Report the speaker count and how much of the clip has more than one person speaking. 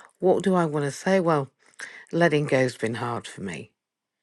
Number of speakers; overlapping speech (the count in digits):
1, no overlap